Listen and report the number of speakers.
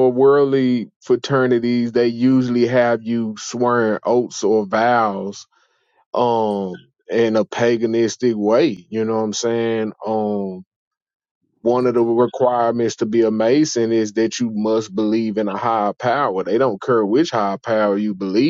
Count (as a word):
one